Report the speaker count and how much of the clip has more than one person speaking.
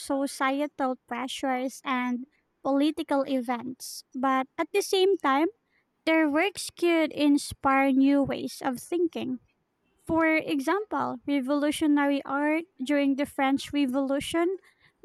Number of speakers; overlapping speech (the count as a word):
one, no overlap